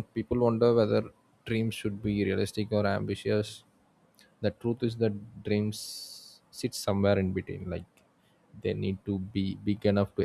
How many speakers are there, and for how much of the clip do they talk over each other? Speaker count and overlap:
one, no overlap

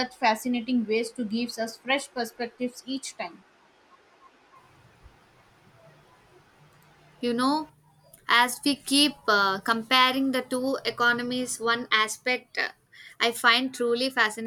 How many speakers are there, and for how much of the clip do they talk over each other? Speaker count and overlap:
two, no overlap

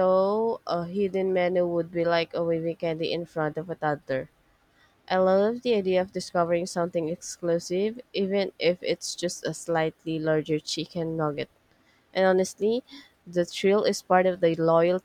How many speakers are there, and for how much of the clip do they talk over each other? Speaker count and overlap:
one, no overlap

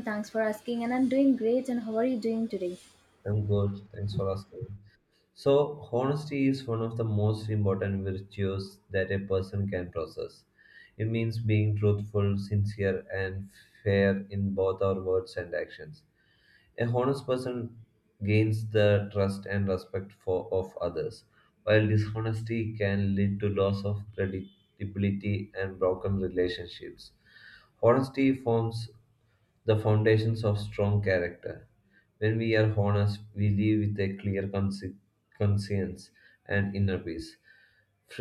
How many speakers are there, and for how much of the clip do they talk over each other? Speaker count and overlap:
two, no overlap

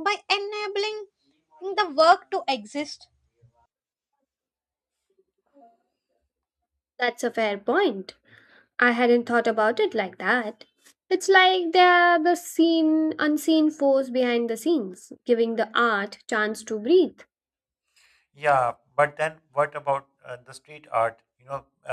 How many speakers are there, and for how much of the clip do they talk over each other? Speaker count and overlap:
three, no overlap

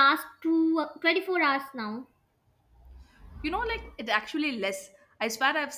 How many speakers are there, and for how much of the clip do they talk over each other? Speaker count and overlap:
two, no overlap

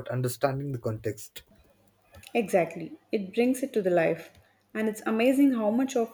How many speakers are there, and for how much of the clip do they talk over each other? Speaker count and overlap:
two, no overlap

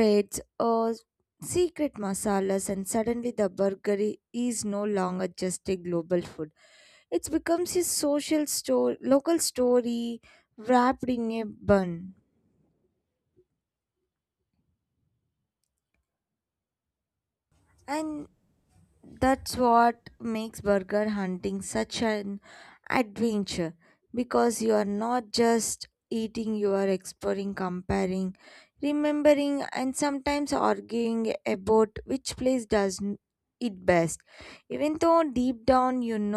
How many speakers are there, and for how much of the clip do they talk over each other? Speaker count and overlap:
one, no overlap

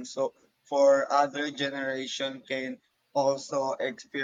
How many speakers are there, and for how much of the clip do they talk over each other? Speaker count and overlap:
one, no overlap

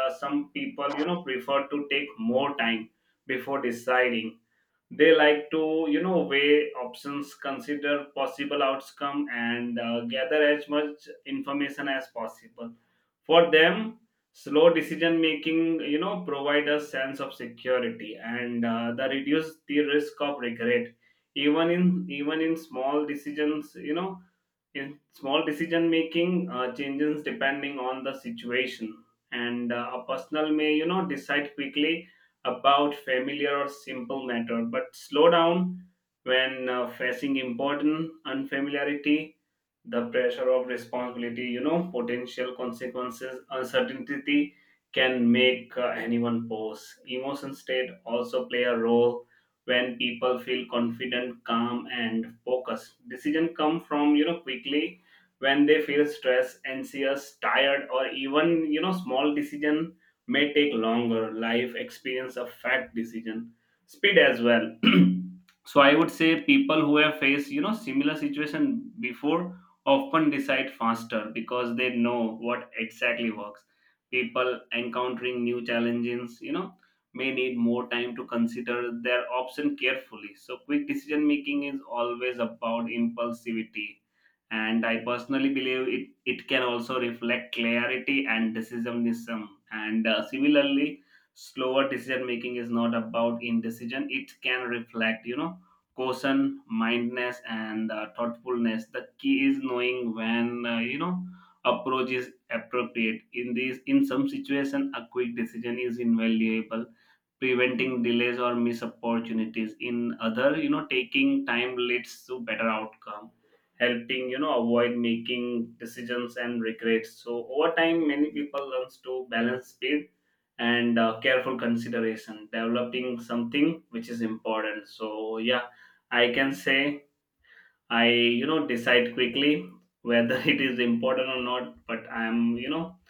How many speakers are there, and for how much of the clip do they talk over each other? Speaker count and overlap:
one, no overlap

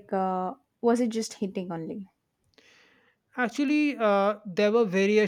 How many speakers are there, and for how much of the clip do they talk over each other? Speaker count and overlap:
two, no overlap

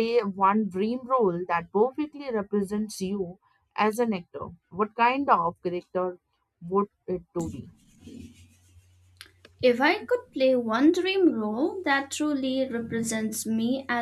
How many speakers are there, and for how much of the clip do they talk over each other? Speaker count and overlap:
two, no overlap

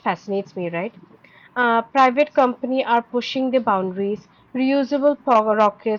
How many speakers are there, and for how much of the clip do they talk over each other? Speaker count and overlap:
one, no overlap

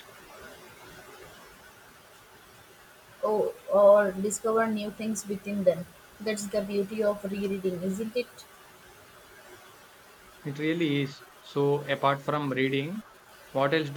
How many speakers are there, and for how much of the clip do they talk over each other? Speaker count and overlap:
two, no overlap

